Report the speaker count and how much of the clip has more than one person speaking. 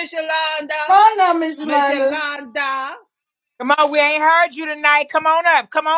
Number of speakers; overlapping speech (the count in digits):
3, about 10%